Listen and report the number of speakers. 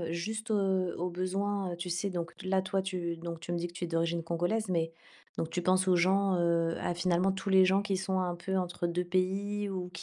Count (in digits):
1